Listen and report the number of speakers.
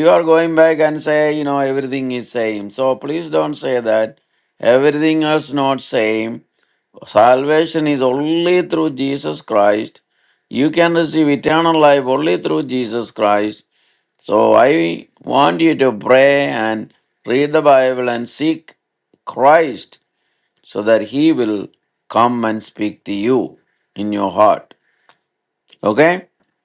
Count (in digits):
1